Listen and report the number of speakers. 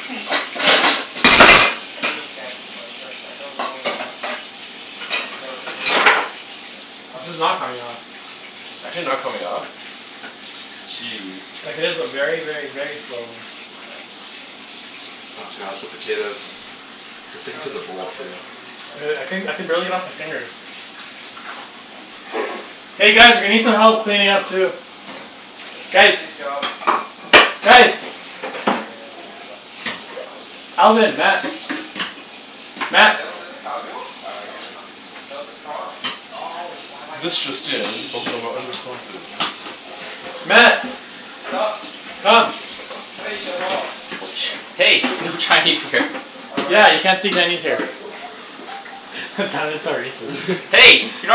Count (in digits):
4